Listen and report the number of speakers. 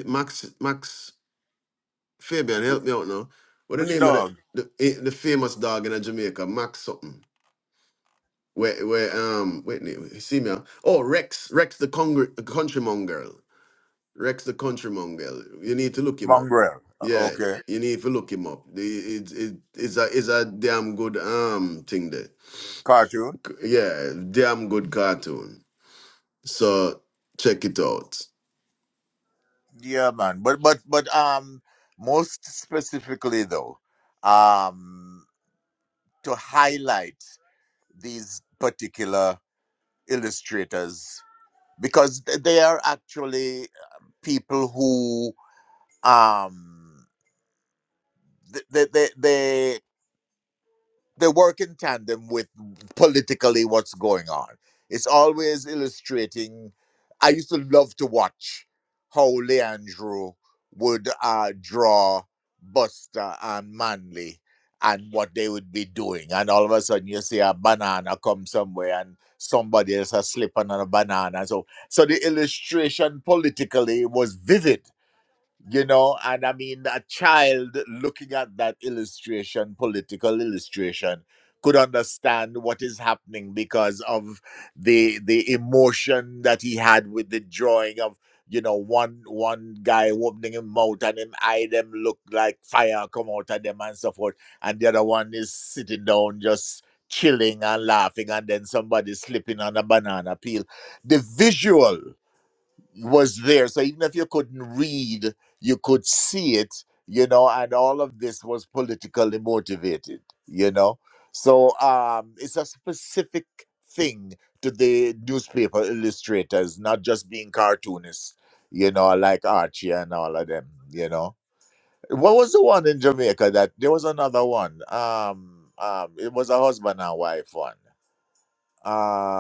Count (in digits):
2